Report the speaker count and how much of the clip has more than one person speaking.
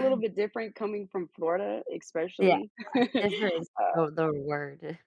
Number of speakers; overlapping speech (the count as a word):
two, about 11%